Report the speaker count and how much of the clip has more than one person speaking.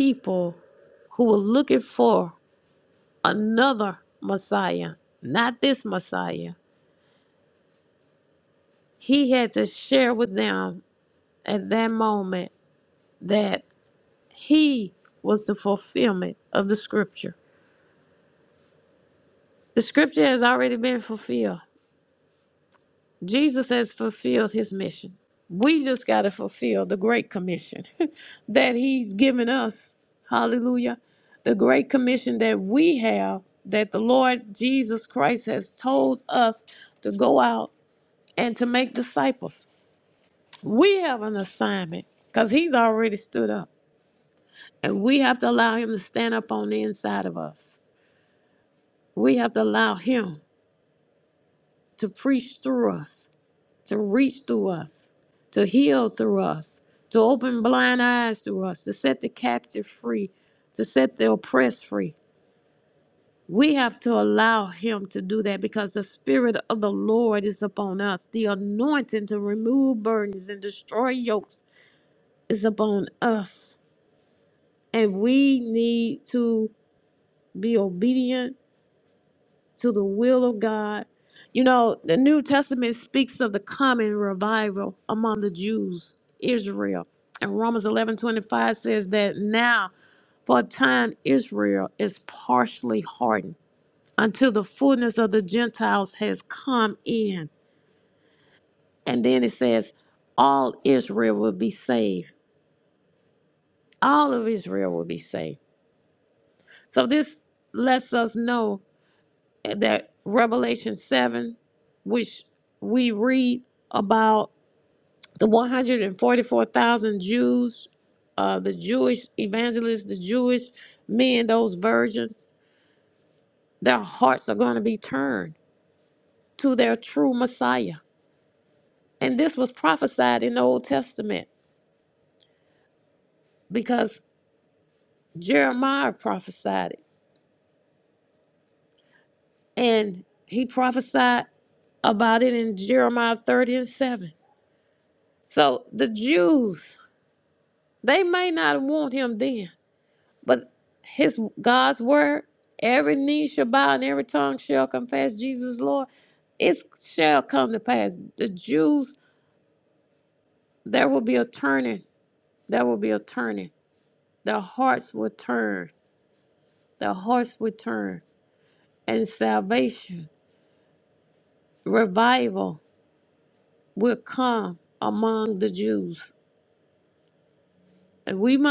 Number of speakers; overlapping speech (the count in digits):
1, no overlap